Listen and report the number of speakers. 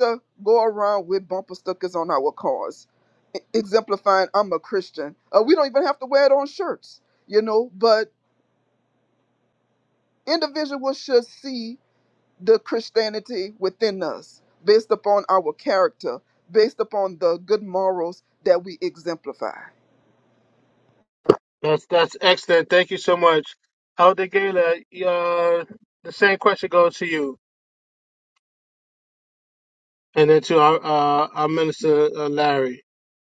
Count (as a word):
two